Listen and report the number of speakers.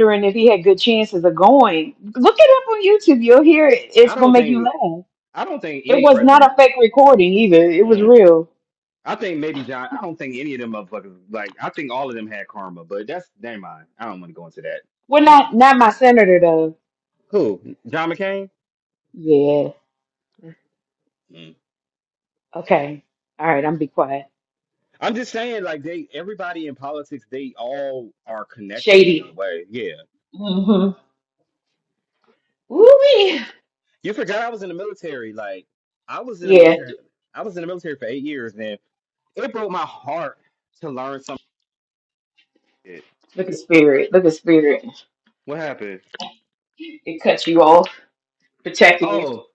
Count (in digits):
2